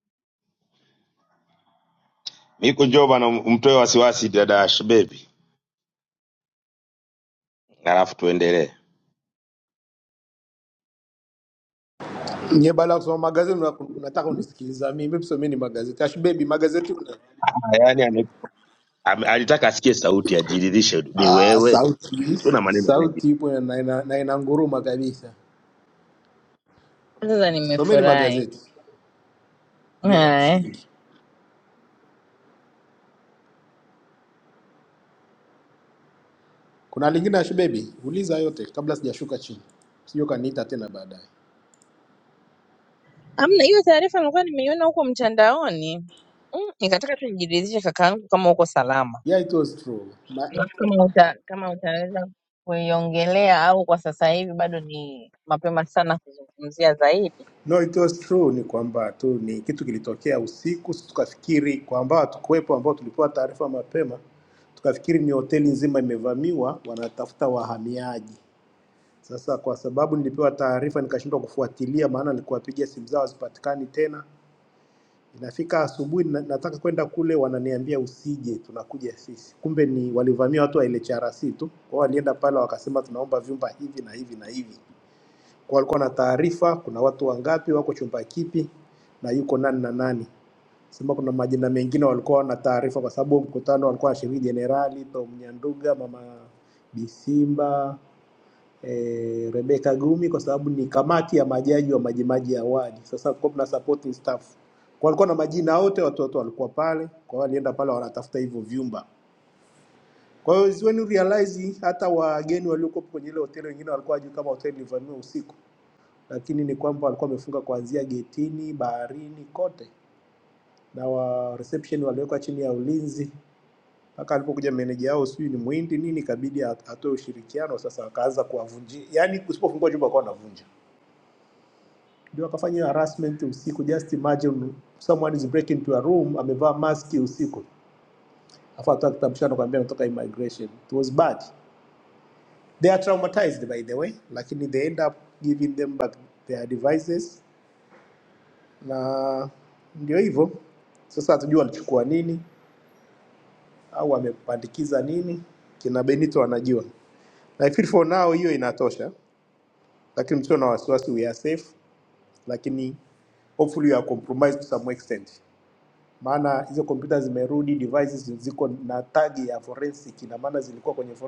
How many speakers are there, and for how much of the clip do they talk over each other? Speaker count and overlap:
3, about 2%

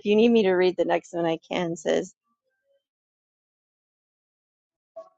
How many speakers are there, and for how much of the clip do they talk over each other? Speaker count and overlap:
1, no overlap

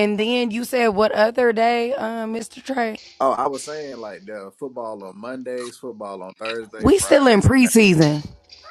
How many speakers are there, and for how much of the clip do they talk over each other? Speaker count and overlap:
2, about 11%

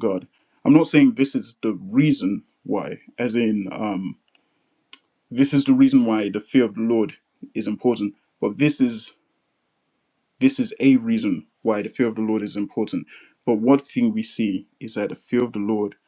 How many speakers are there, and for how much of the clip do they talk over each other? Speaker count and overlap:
1, no overlap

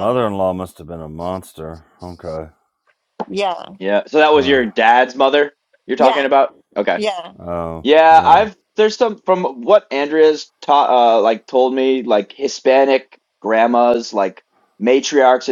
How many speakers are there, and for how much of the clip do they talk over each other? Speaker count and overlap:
3, about 9%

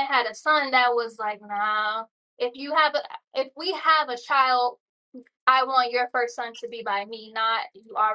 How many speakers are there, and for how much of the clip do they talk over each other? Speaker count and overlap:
1, no overlap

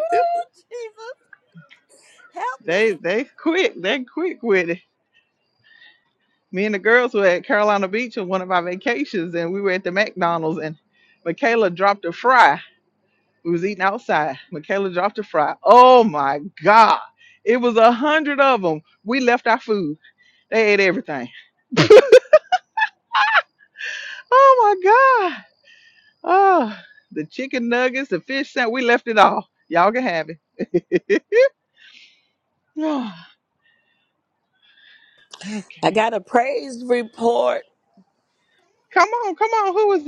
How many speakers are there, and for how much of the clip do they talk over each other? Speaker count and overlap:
3, about 1%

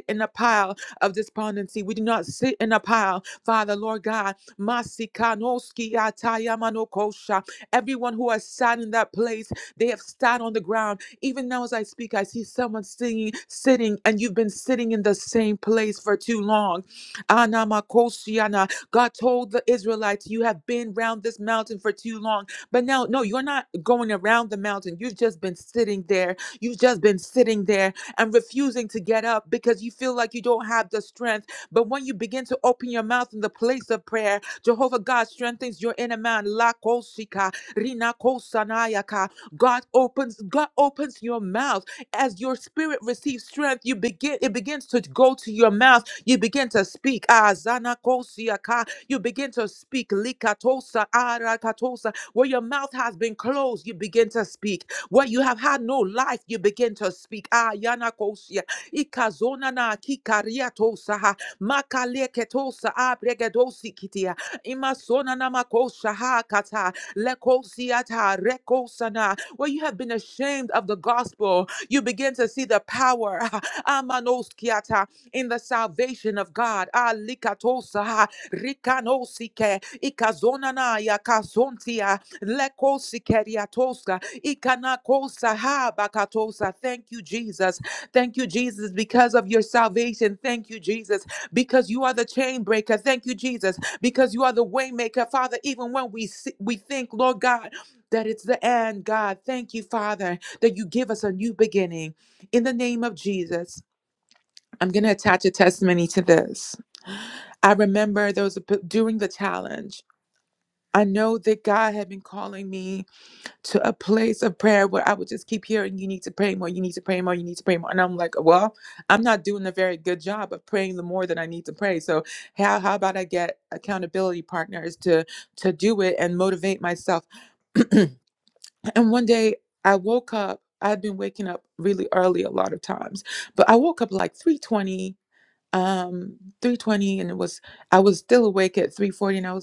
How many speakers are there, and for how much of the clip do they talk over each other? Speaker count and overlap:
1, no overlap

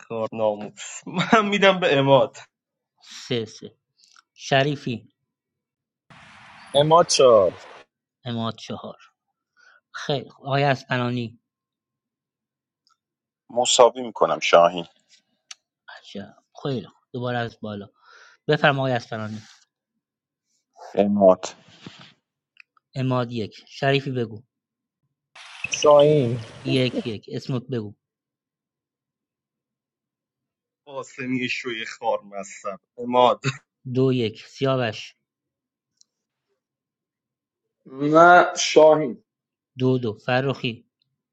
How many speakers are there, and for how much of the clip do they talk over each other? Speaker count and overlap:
5, no overlap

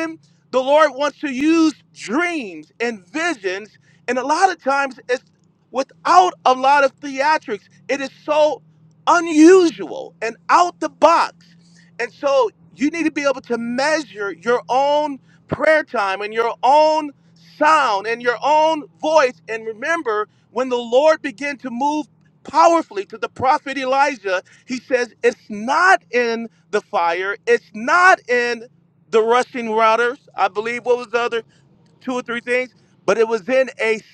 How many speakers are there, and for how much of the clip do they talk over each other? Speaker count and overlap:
1, no overlap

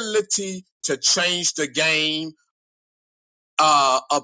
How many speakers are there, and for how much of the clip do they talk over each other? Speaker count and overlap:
1, no overlap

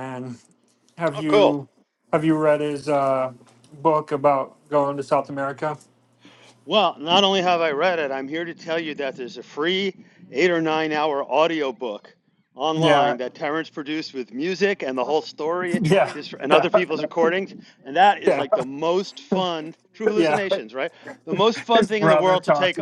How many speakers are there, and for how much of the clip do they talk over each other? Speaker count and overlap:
2, about 12%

